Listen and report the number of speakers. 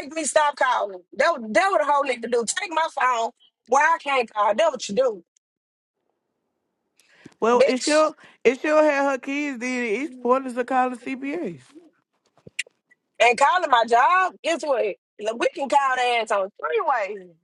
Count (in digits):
2